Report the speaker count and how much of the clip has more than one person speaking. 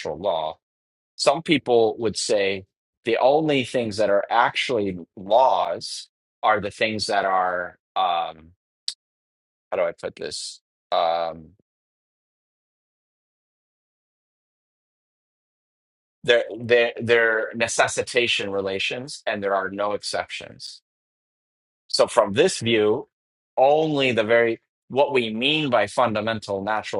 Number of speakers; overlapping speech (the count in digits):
1, no overlap